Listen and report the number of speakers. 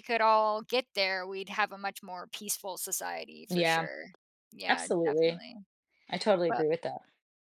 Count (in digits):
2